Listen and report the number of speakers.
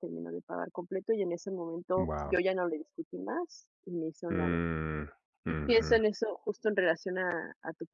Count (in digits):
2